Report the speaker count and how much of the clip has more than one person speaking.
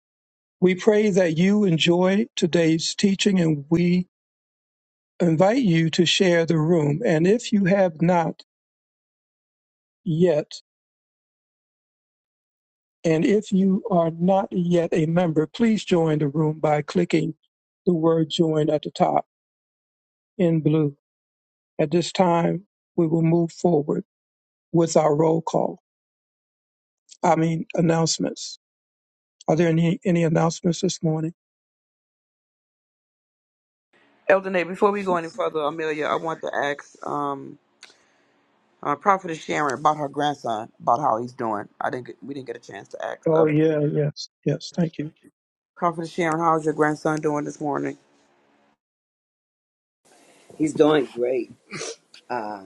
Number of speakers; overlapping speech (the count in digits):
3, under 1%